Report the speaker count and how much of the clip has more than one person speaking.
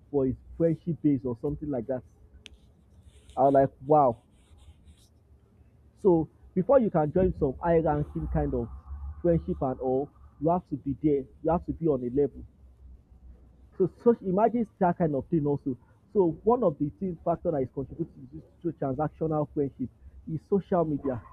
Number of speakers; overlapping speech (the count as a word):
one, no overlap